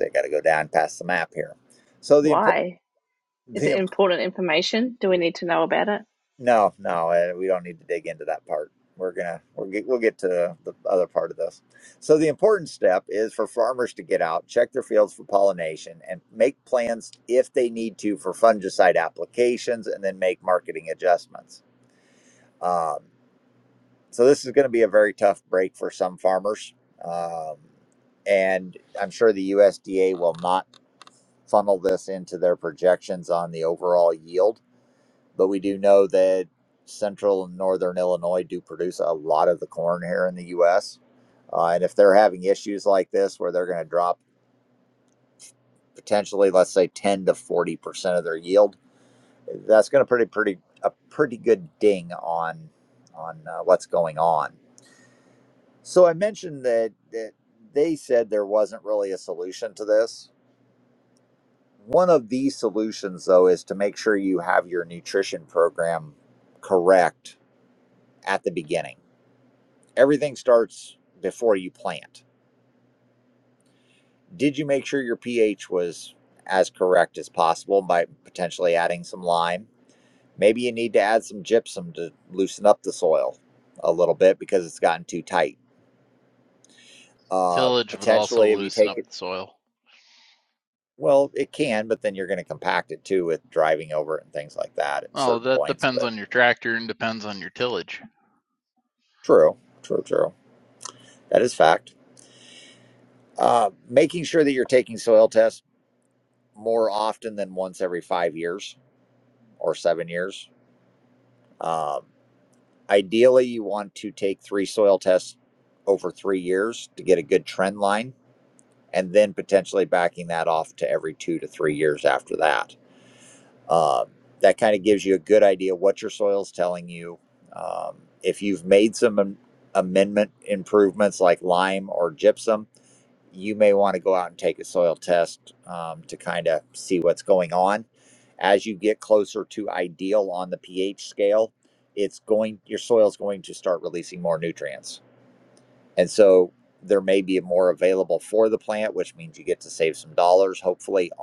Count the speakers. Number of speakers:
3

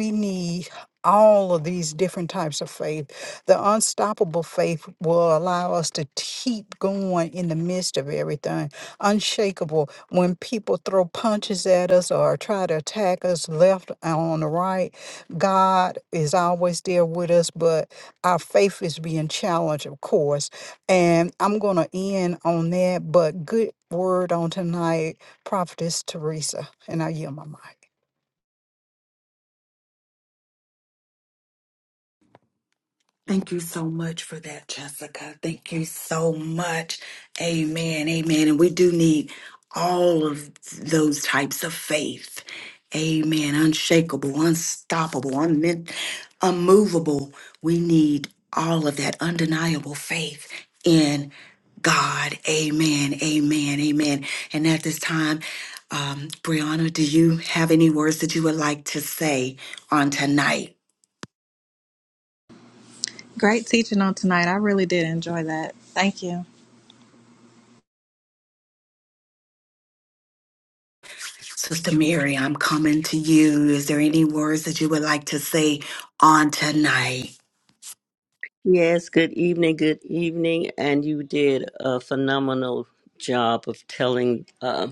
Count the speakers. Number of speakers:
4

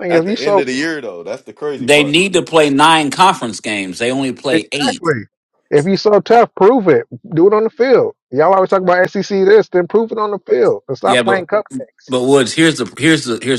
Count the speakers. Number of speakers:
3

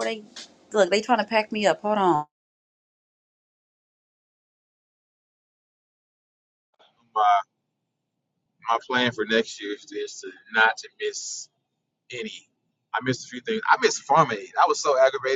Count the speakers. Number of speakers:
2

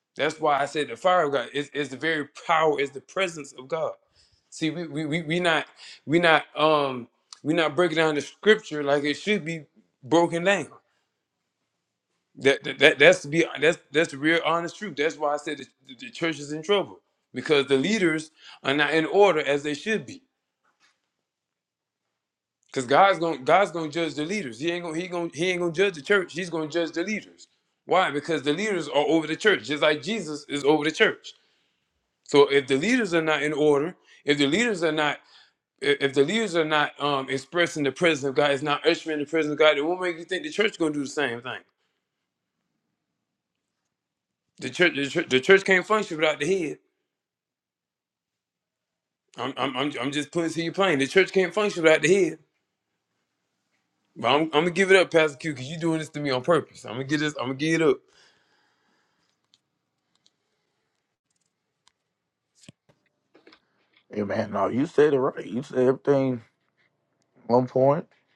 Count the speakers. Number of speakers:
2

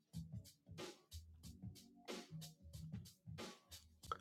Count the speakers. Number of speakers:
0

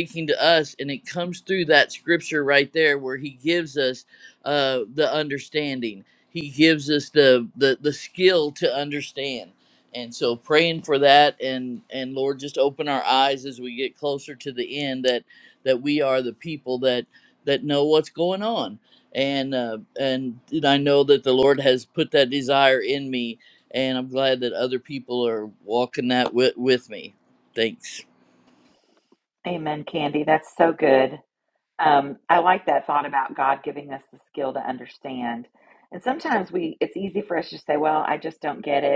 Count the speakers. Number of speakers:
2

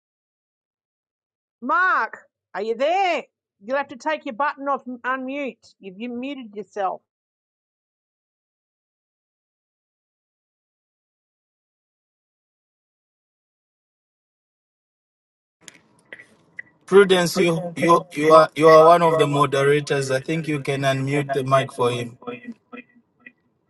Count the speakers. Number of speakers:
2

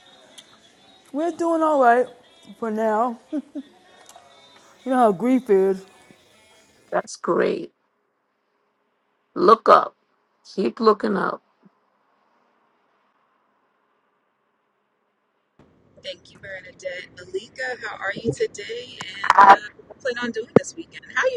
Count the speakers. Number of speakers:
3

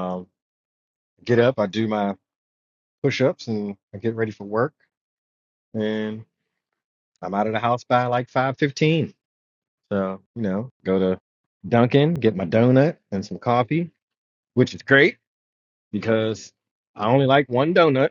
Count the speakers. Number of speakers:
1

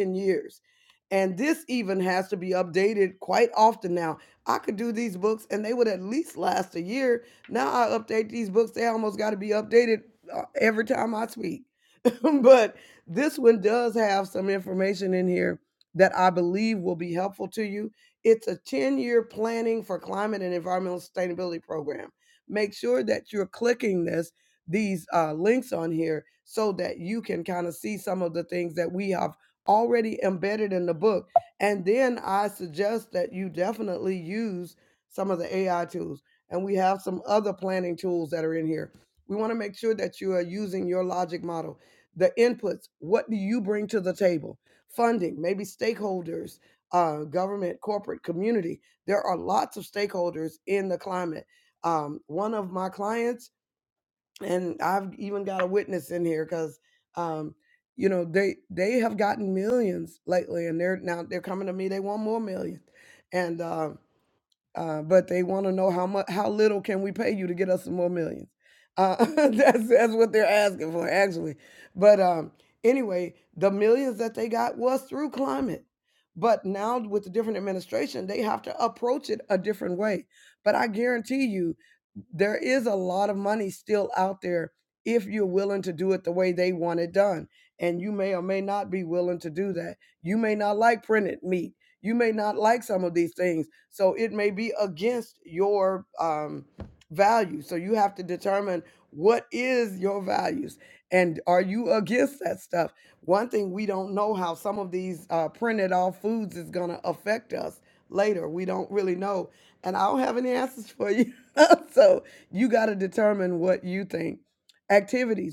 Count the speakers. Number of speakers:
1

